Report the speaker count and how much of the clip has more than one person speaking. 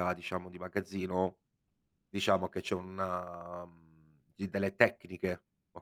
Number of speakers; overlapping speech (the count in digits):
1, no overlap